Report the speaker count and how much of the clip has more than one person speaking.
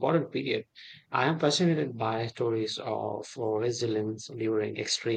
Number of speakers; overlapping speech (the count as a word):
one, no overlap